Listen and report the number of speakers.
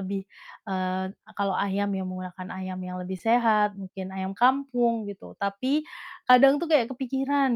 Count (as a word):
one